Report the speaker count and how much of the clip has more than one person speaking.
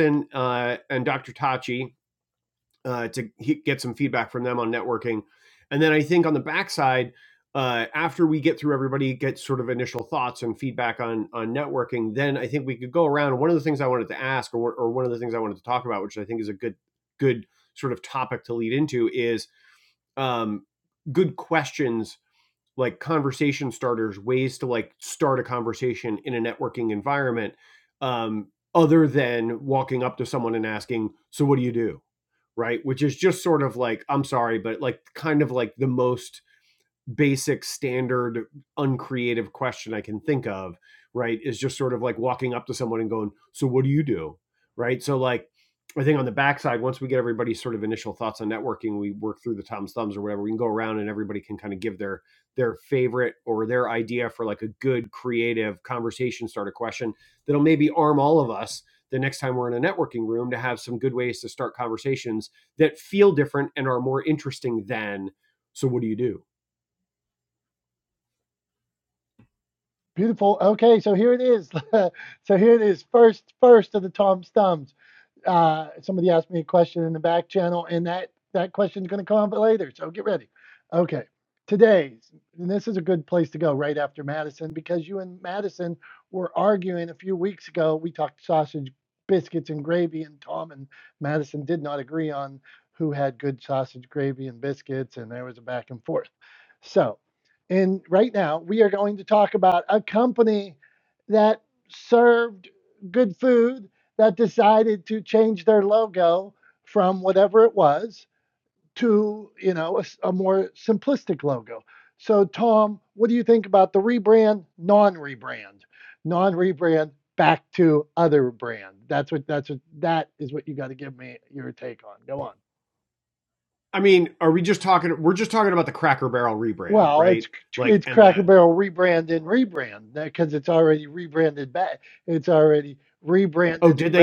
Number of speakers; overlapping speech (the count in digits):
2, about 1%